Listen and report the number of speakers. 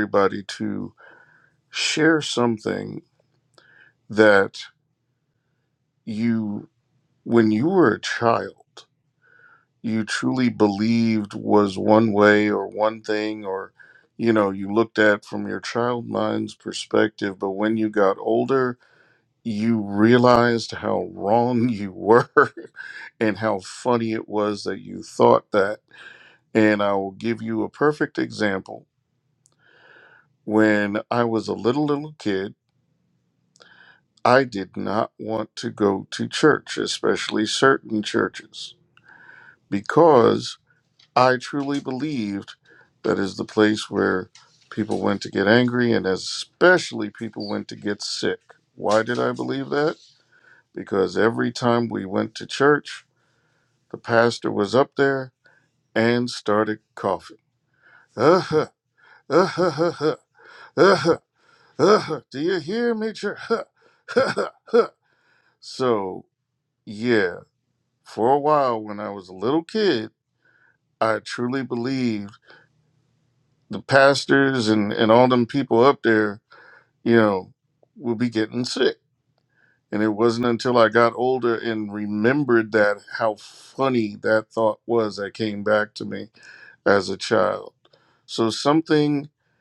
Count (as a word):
one